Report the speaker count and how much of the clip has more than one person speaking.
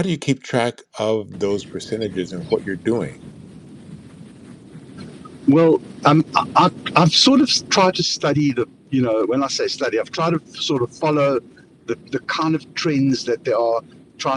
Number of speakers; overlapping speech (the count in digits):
2, no overlap